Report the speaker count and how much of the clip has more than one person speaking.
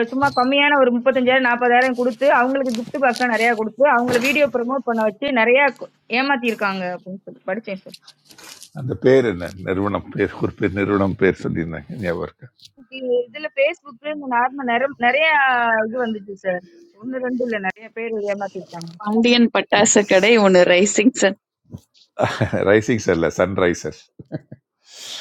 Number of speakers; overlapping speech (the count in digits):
3, no overlap